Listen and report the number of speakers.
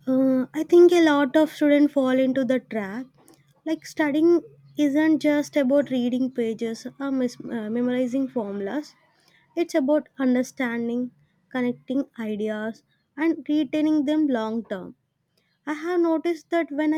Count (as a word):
one